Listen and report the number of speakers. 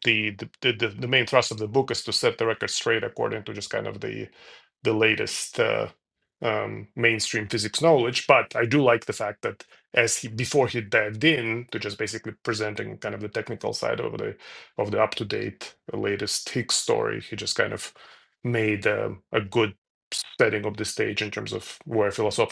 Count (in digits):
1